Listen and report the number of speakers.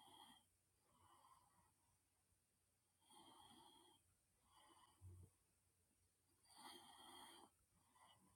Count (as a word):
zero